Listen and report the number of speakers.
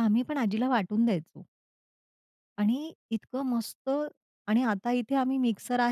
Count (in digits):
1